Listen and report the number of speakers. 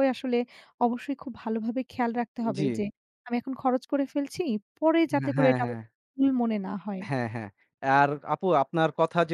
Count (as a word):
two